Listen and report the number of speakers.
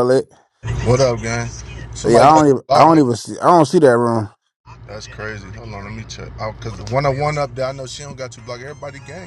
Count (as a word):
two